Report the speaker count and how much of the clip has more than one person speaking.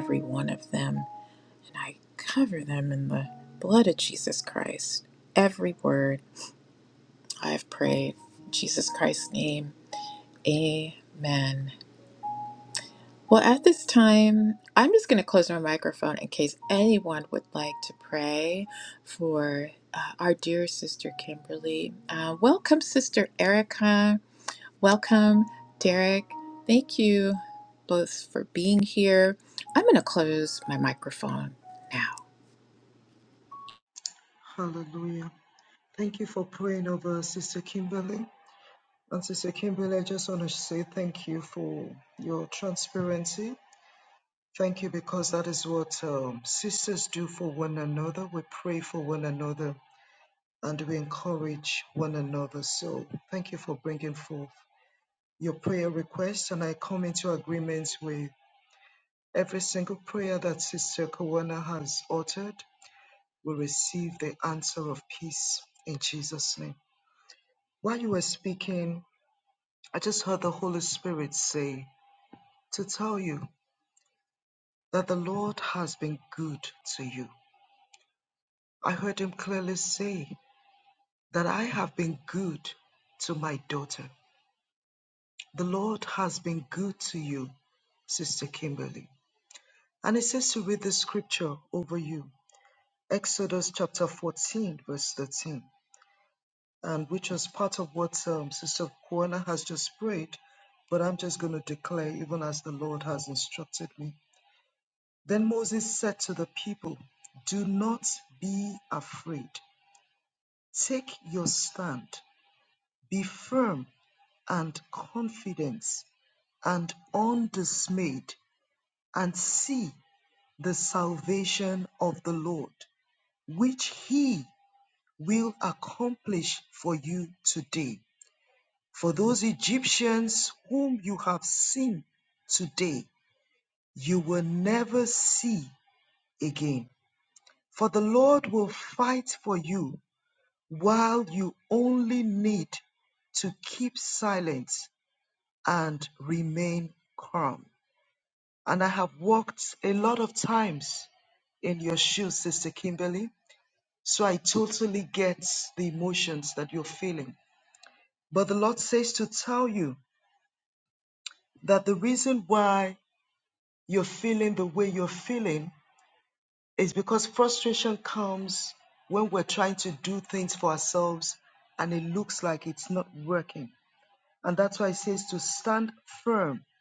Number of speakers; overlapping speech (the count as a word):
two, no overlap